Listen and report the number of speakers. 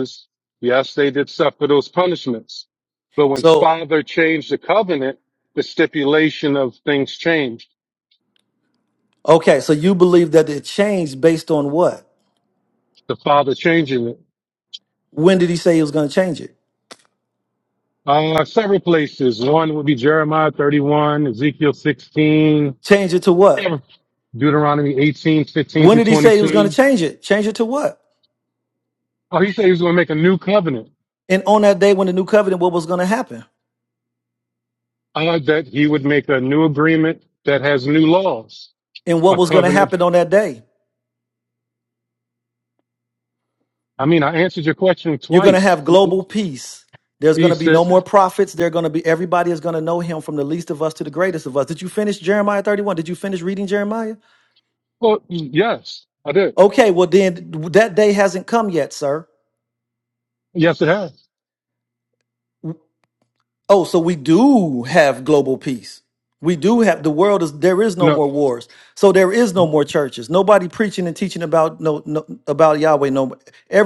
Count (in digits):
2